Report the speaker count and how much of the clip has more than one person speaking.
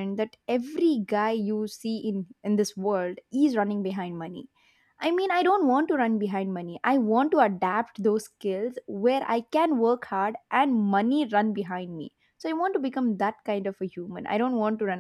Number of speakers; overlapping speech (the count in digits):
1, no overlap